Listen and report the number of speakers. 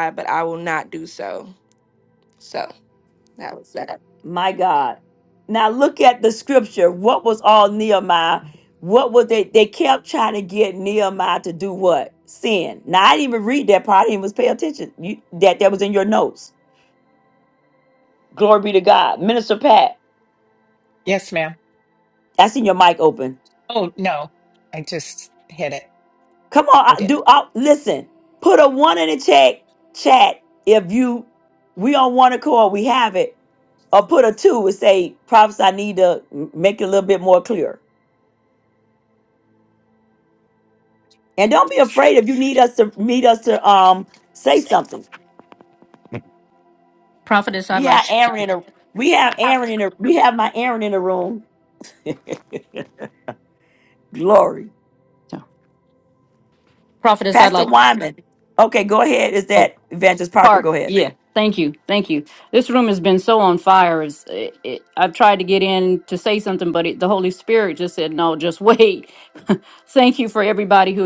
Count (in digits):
4